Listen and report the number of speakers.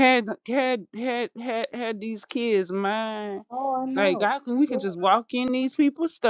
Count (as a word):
two